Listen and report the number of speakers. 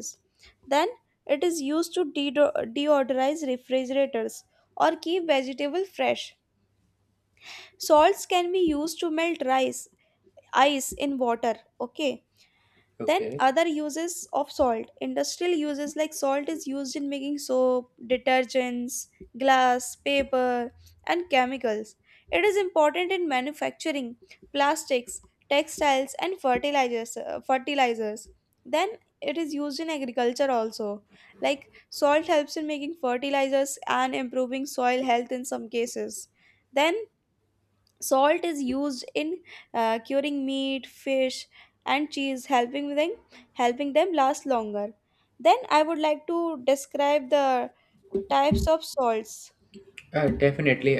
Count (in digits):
2